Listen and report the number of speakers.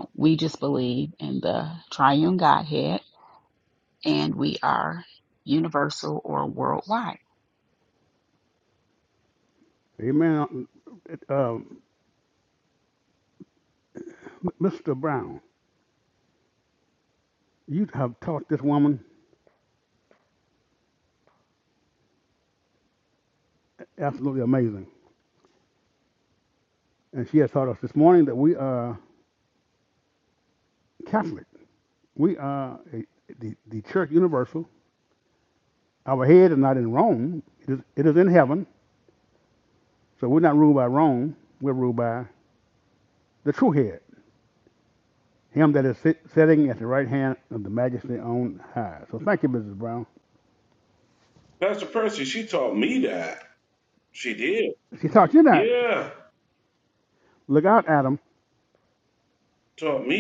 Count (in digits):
3